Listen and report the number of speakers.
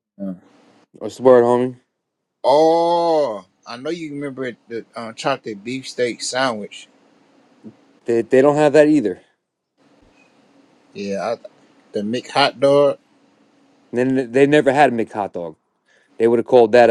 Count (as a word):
two